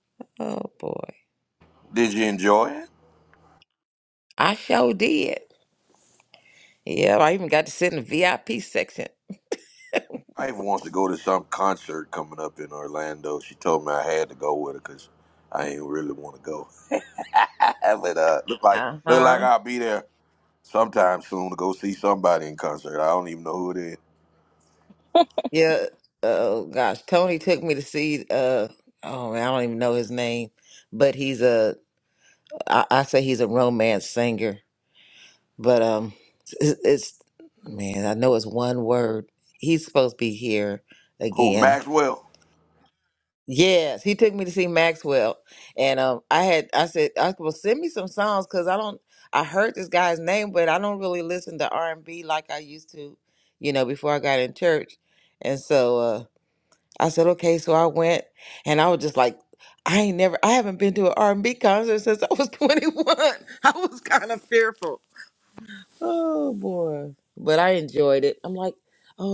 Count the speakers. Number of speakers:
2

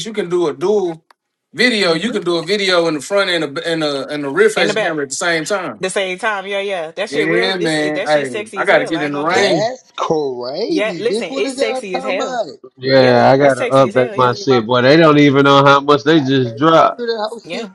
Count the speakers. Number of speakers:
4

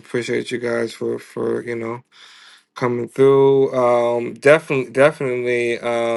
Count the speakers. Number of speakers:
1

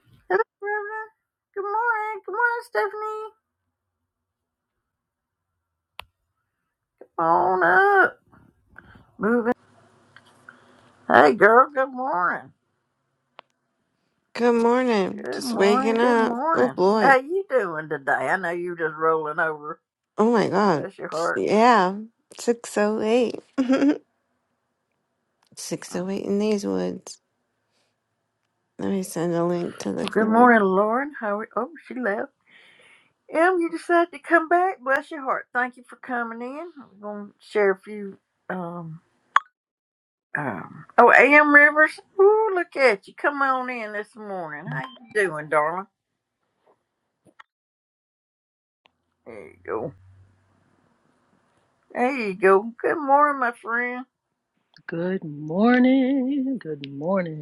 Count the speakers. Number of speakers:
3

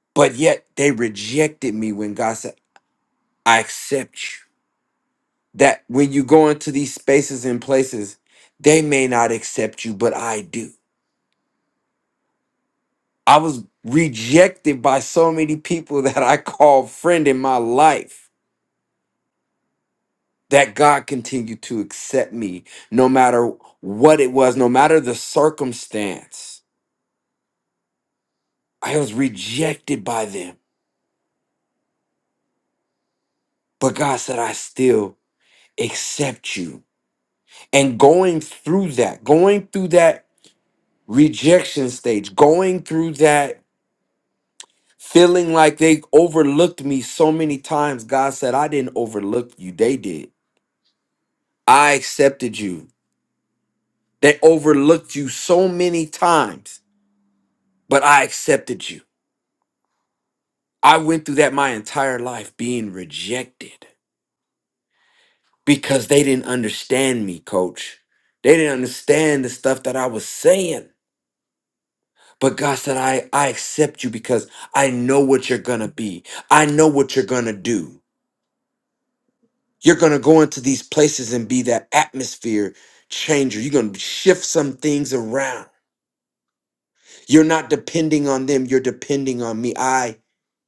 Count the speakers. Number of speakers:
1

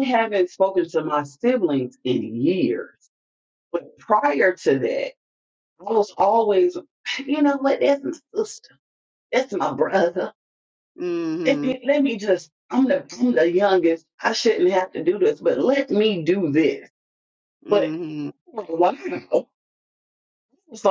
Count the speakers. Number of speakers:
2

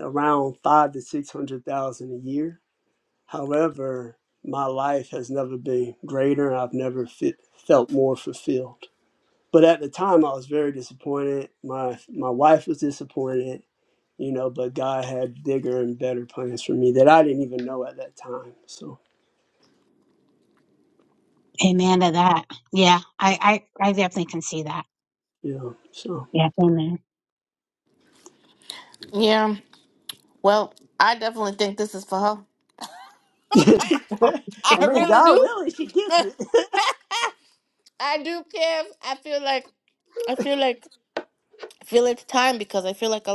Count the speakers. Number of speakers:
3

